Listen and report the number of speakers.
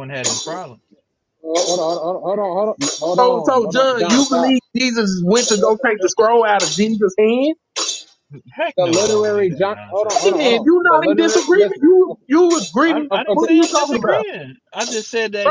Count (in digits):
3